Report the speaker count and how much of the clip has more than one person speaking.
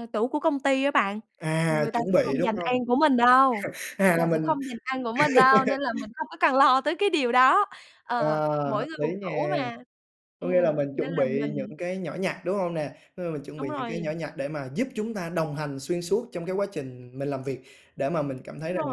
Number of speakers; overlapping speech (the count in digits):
2, about 27%